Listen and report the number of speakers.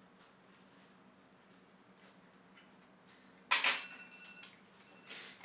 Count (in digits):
0